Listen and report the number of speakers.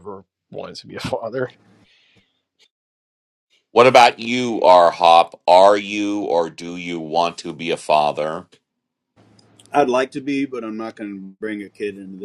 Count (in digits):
3